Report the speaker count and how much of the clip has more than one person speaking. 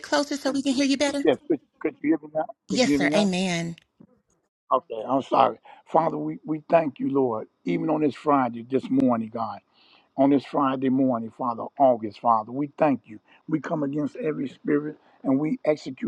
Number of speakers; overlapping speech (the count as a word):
two, about 4%